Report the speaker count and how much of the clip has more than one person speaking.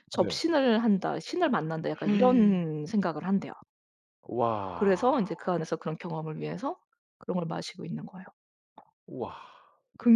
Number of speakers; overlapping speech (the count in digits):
2, about 7%